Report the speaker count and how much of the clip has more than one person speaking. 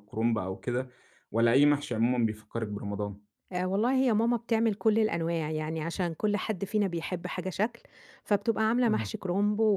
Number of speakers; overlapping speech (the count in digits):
2, about 2%